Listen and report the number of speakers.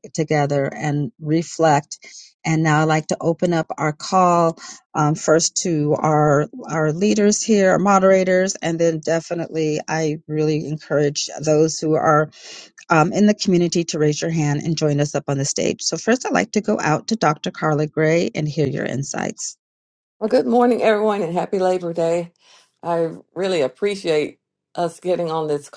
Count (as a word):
two